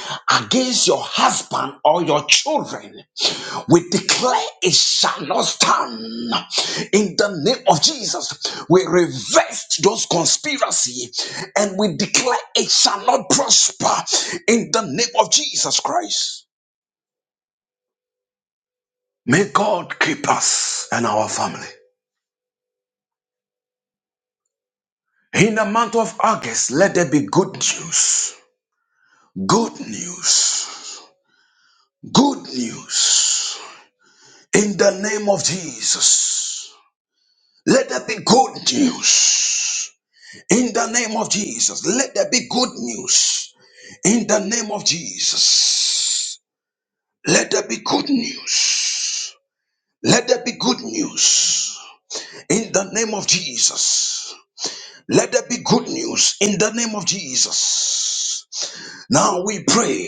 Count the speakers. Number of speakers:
1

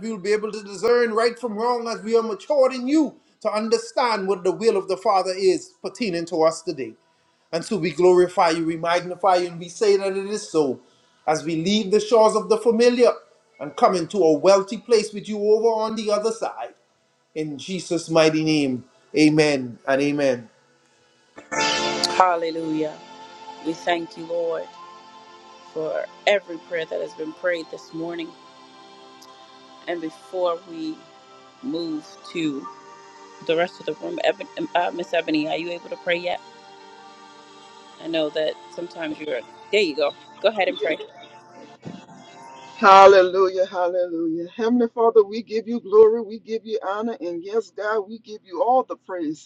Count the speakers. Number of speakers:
3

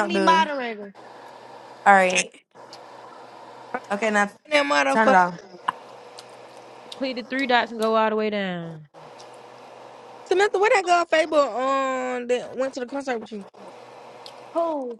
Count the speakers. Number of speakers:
4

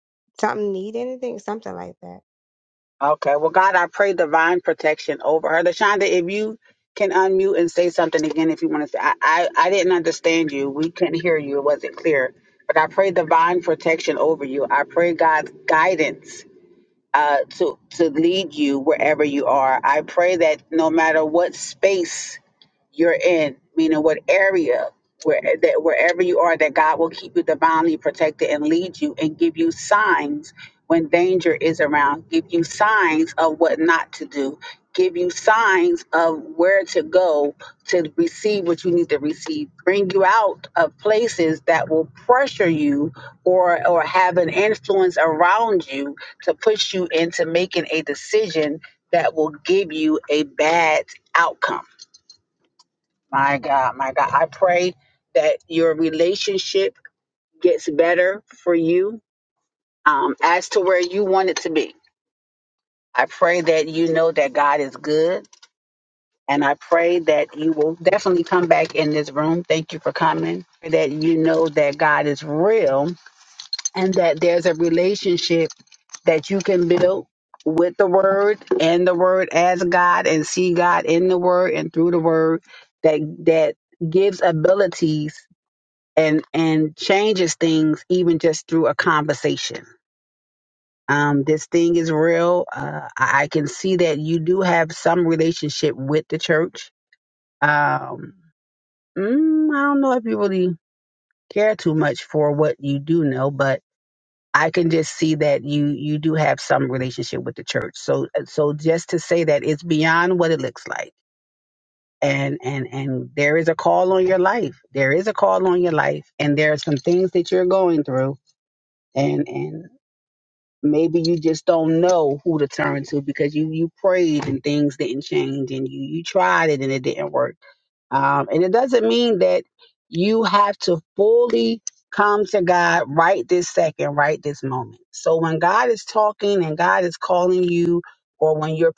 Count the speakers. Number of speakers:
2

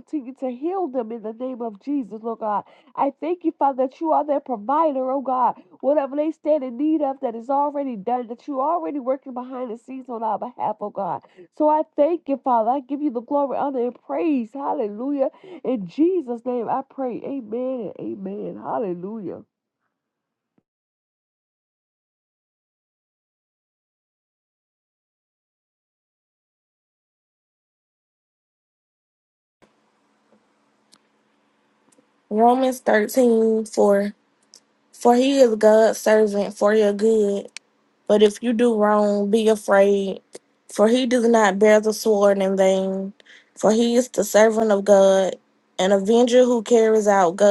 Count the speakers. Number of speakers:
2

